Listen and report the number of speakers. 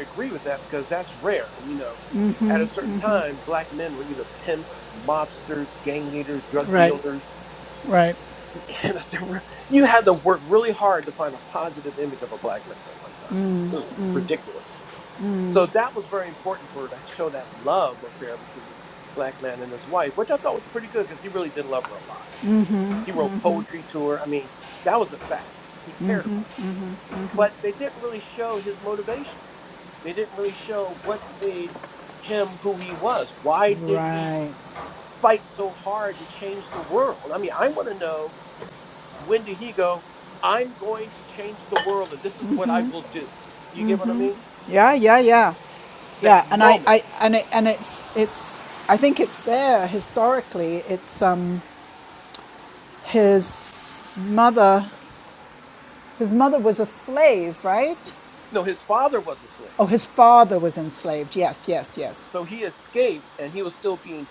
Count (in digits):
2